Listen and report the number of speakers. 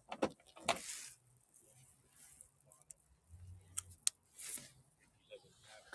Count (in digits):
0